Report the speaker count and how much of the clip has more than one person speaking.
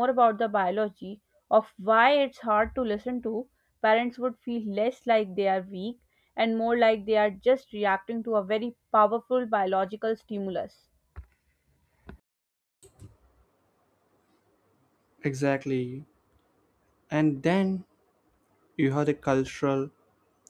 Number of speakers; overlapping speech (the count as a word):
two, no overlap